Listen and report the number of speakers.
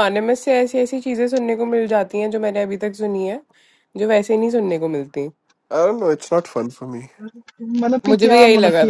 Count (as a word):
three